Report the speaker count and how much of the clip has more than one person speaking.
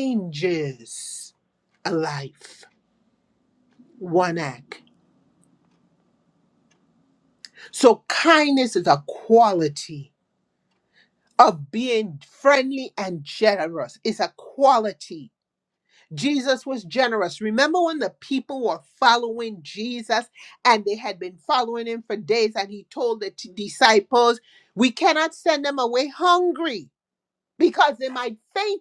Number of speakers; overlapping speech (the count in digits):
1, no overlap